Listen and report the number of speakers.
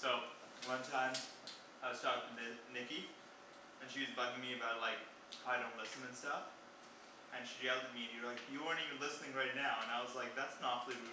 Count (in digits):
1